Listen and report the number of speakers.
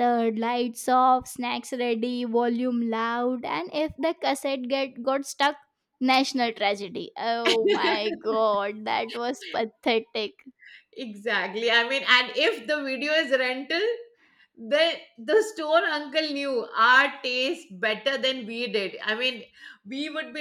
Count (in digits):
2